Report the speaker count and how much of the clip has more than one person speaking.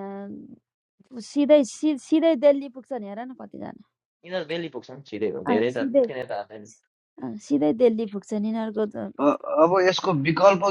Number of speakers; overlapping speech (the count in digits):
3, about 6%